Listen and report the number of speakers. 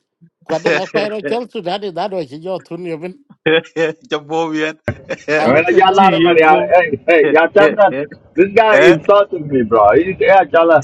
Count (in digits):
3